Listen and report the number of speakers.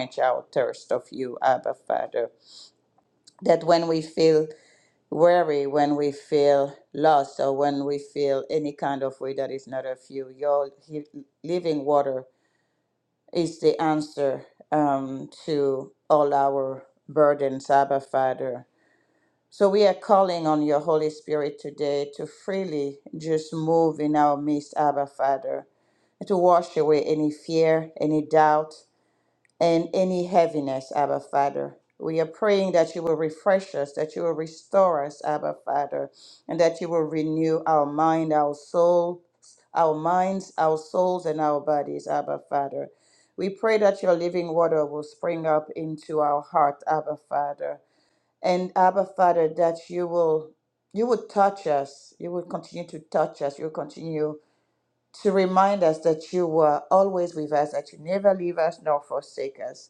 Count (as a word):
one